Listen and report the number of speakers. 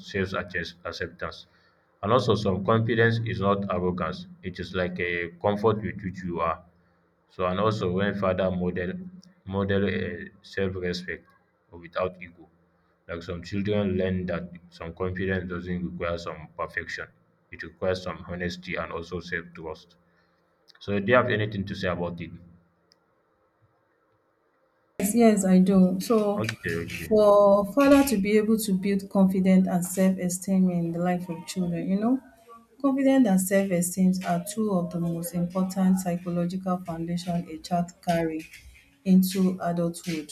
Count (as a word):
two